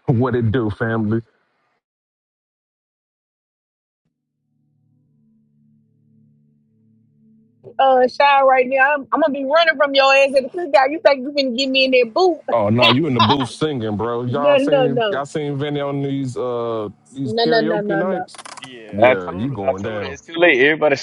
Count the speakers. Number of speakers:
3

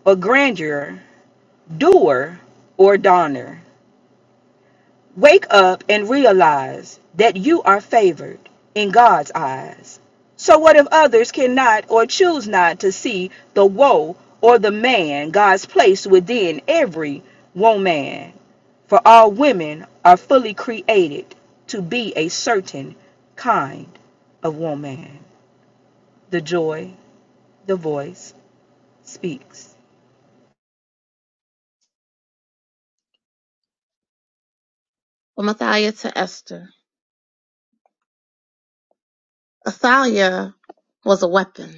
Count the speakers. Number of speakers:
2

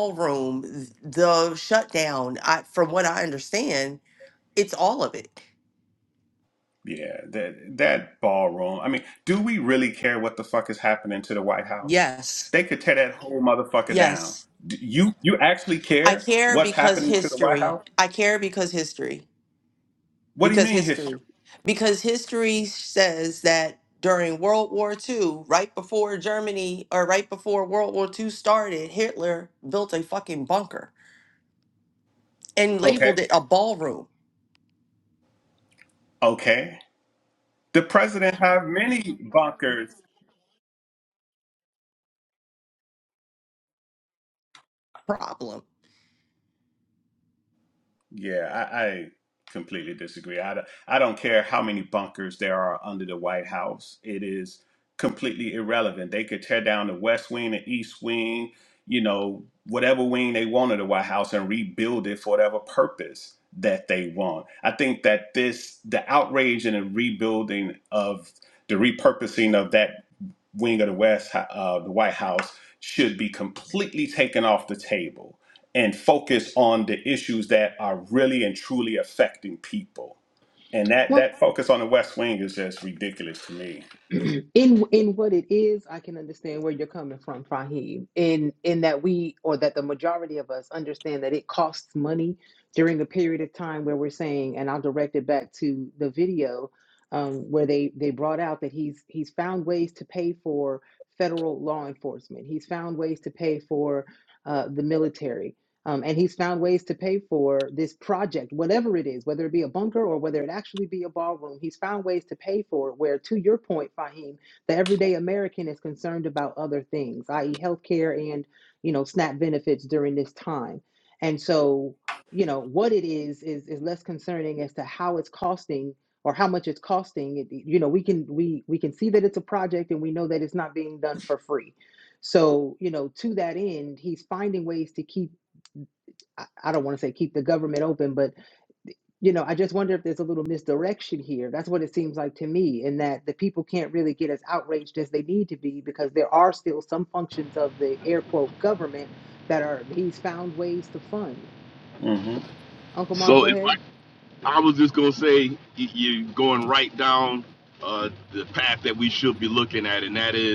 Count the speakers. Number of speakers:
4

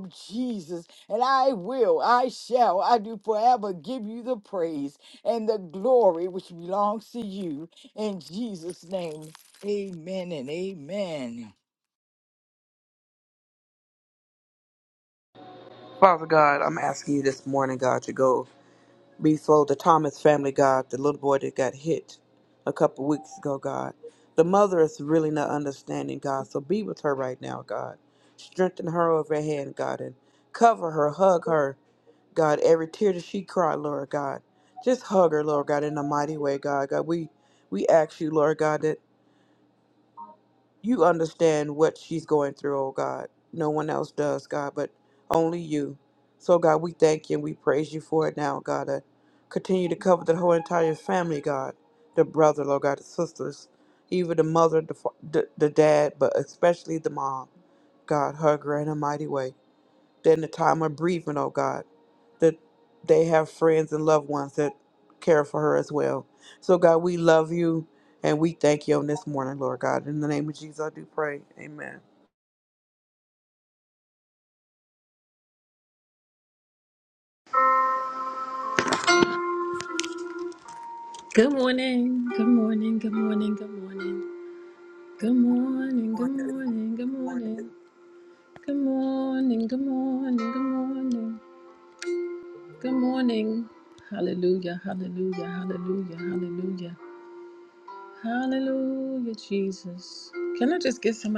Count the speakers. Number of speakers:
3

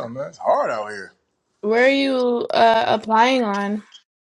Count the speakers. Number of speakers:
2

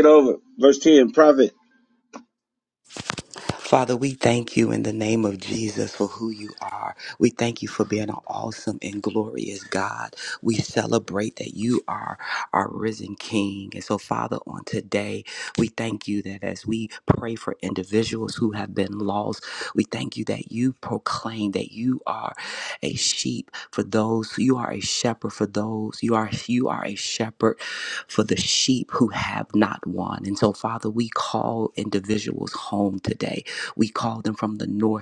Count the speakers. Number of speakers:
2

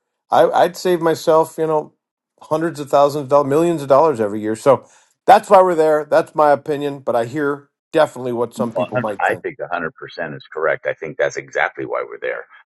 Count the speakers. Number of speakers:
2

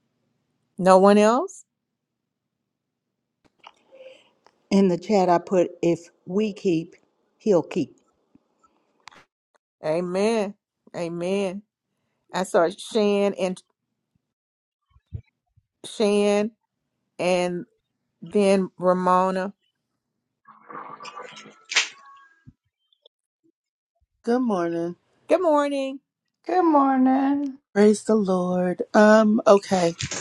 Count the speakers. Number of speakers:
4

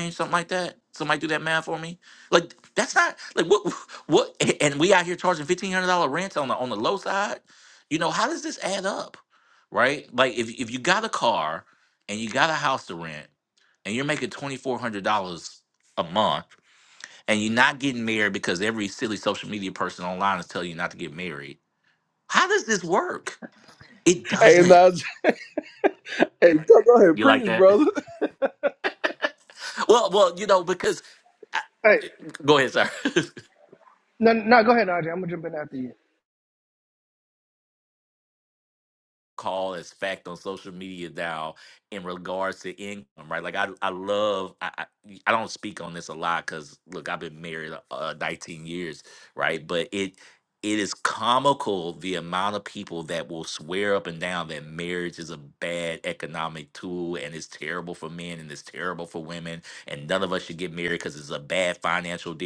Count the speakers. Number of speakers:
3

